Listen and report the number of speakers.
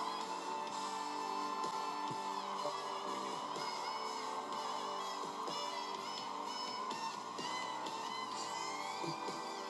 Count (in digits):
0